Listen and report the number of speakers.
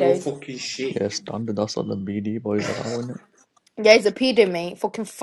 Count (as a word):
three